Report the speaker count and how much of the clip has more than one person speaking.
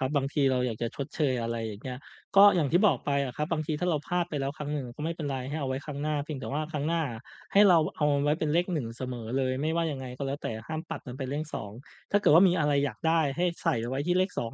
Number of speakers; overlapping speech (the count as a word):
one, no overlap